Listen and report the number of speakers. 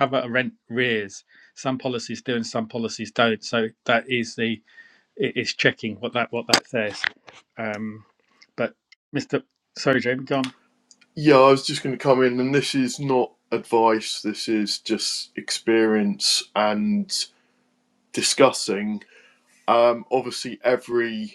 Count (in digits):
2